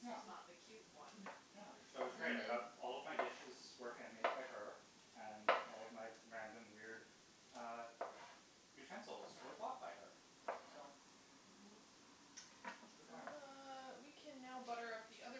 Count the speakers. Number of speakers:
3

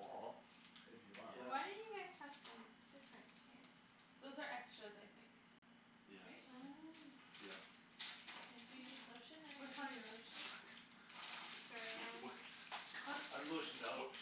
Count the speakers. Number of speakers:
4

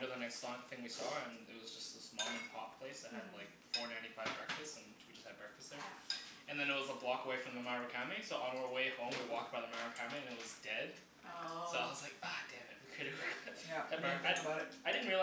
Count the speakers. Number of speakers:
3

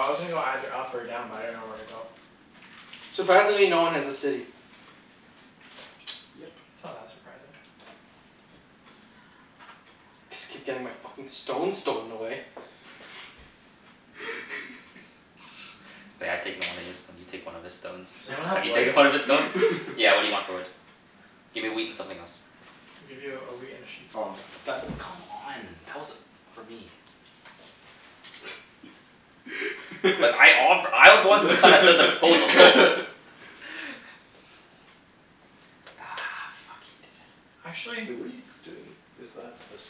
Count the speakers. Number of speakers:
4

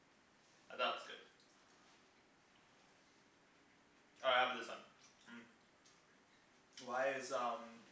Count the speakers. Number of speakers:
1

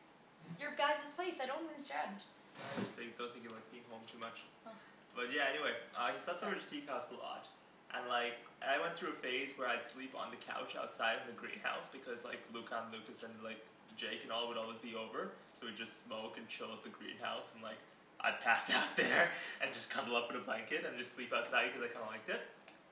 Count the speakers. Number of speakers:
2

